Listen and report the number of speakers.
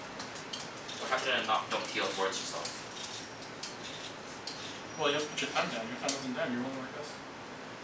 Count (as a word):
two